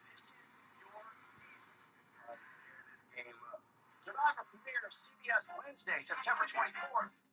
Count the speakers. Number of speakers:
zero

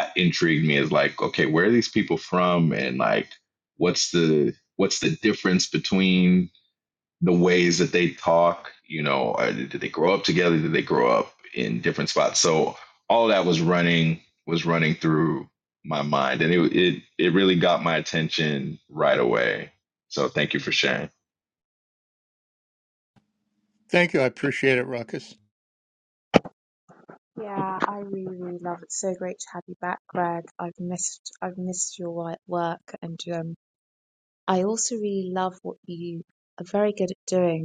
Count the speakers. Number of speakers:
three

